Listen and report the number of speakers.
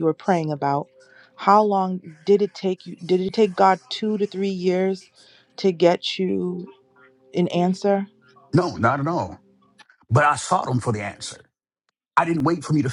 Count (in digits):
2